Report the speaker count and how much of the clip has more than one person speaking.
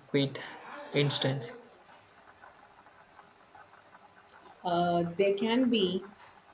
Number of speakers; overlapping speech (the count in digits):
2, no overlap